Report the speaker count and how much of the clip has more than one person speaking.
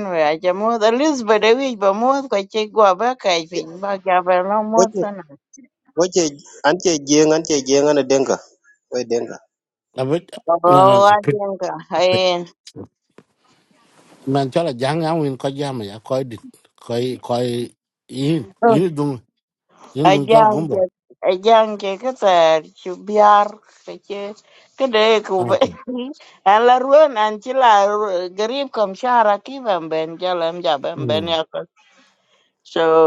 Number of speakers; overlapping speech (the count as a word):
three, about 5%